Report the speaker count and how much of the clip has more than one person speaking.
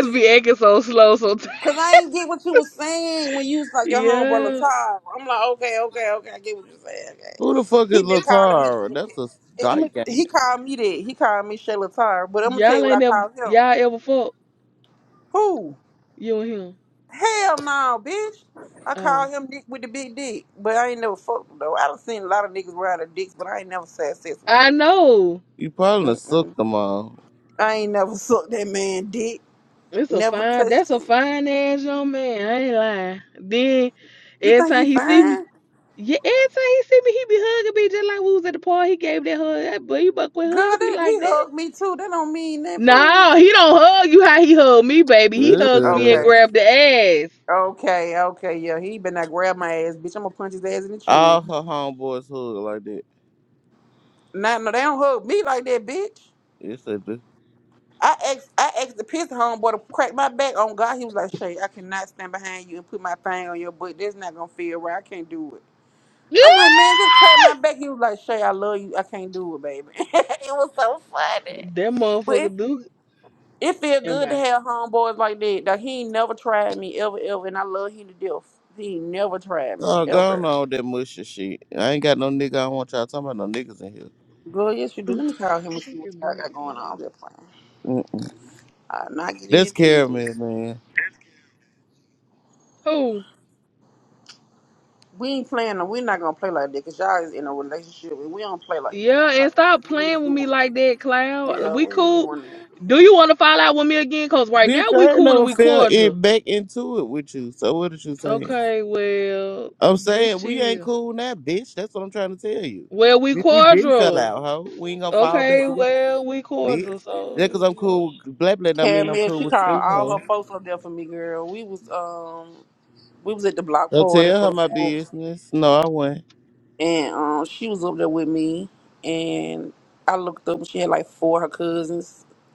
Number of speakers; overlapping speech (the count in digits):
3, about 16%